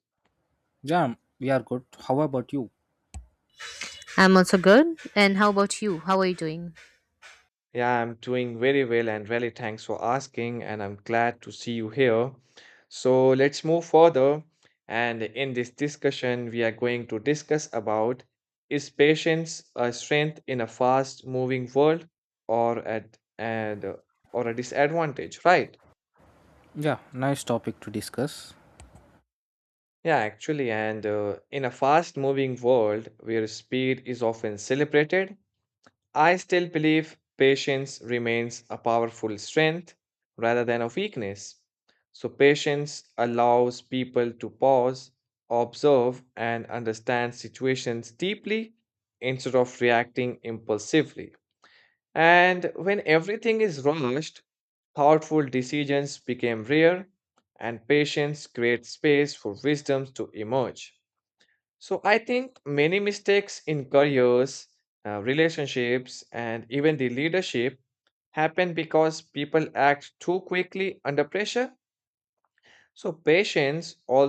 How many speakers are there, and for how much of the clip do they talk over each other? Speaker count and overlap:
3, no overlap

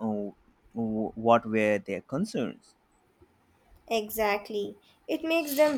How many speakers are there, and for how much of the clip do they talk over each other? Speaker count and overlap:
2, no overlap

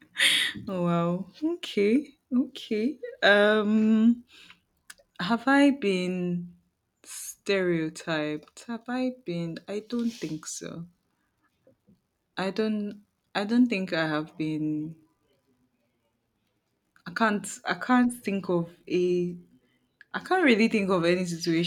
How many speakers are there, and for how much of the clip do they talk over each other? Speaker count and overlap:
1, no overlap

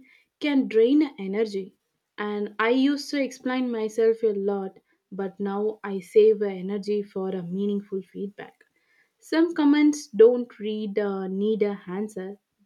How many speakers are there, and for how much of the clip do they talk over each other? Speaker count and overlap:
1, no overlap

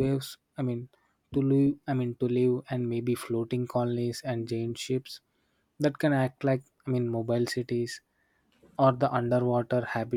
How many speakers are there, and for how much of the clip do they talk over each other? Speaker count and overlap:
1, no overlap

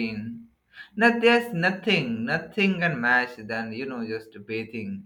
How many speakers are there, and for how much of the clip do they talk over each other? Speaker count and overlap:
1, no overlap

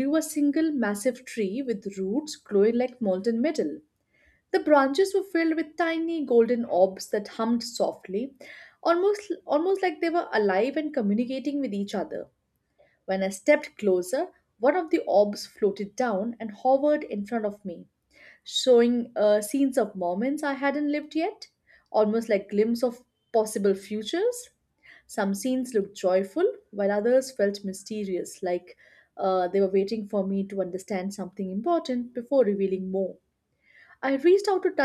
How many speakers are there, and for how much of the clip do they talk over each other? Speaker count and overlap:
1, no overlap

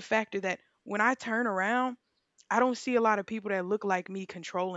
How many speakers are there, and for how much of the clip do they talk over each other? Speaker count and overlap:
1, no overlap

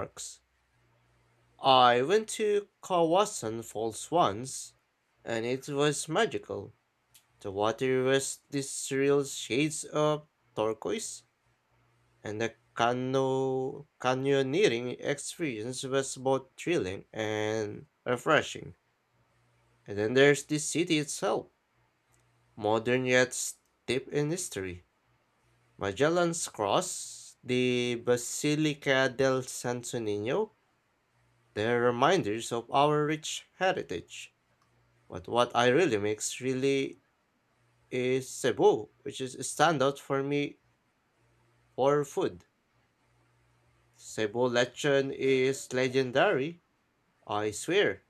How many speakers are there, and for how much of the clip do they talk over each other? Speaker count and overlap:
1, no overlap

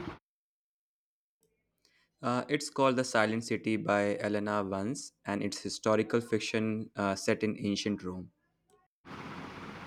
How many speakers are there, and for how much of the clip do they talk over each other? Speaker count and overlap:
1, no overlap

